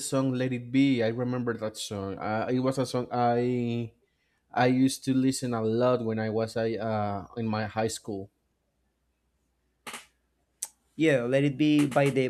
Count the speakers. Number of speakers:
2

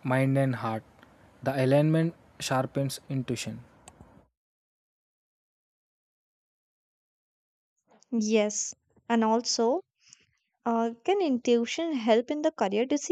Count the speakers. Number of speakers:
2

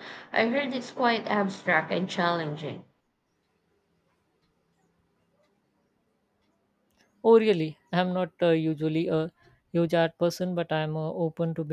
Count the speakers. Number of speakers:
2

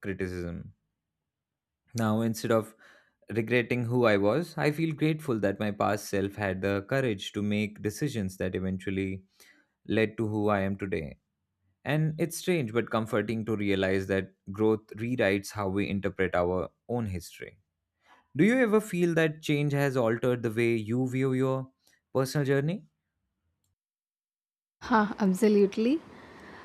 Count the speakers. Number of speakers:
2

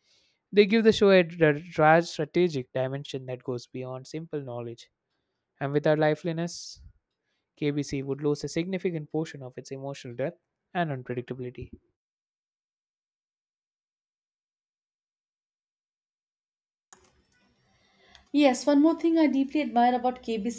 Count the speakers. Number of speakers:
2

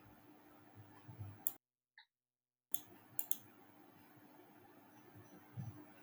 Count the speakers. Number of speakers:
0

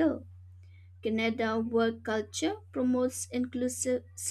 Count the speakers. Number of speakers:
1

